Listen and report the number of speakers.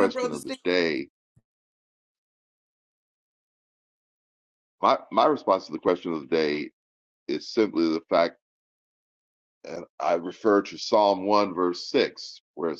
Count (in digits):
1